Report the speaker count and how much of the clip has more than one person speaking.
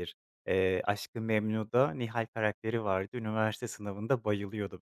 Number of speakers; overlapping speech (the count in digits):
1, no overlap